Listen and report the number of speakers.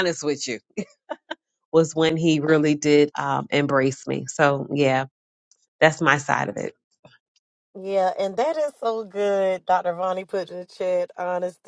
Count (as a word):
two